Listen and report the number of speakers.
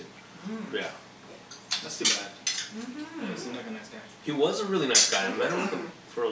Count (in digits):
3